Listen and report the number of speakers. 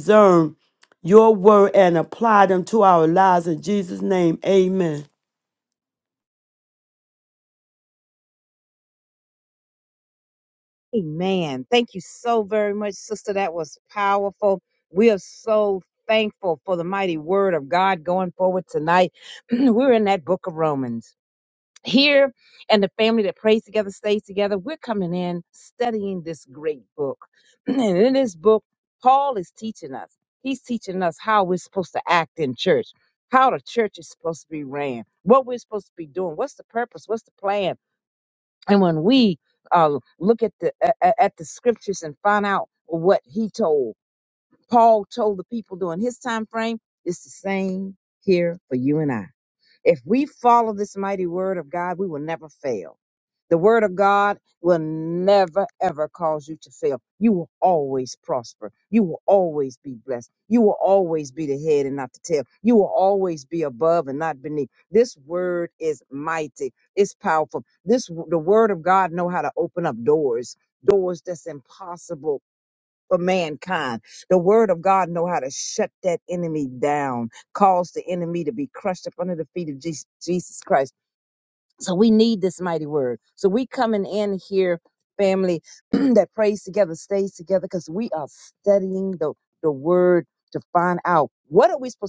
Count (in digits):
2